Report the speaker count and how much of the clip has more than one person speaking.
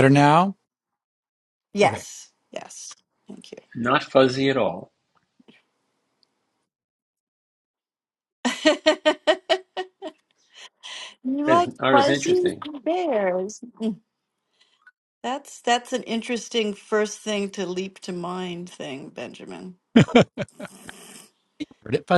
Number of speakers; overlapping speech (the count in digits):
3, about 6%